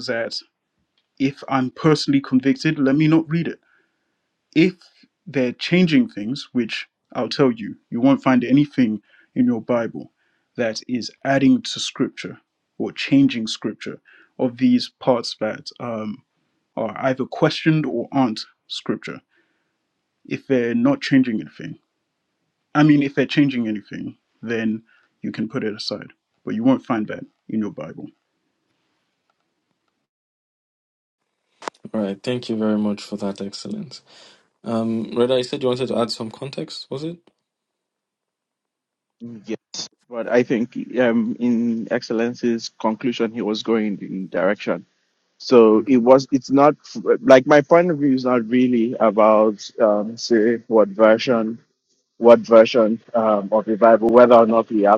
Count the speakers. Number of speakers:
three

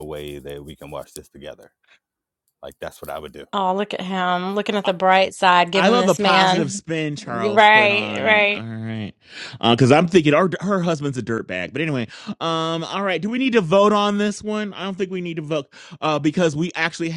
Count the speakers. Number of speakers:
three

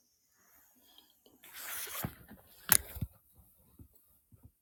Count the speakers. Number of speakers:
zero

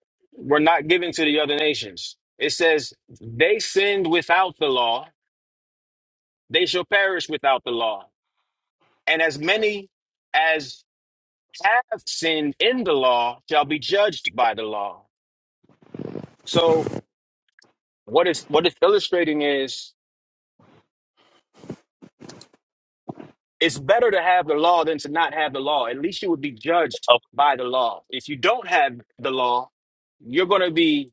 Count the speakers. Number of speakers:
one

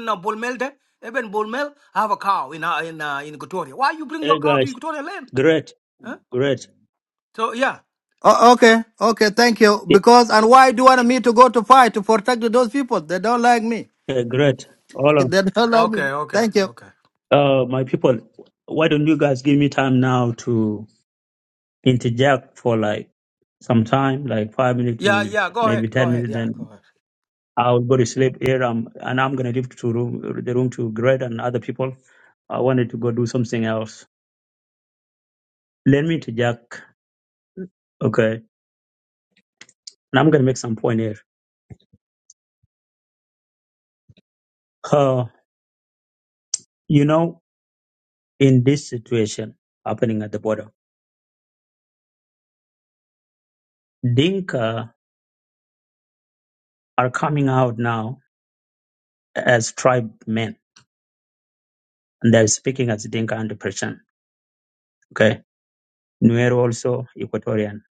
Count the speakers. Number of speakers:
three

